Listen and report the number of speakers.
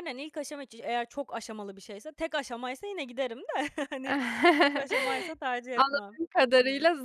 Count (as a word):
two